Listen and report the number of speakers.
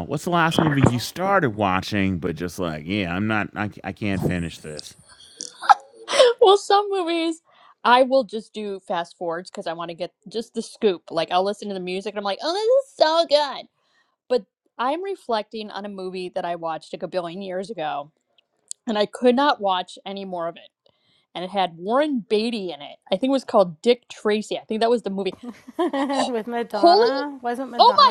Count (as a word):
three